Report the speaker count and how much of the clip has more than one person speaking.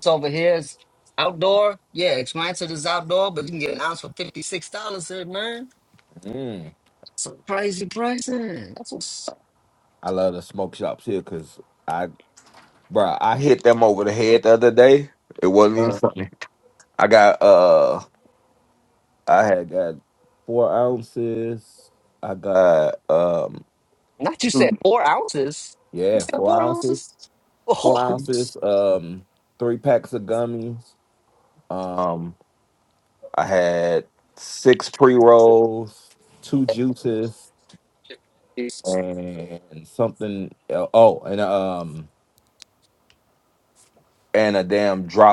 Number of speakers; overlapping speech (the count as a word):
two, about 3%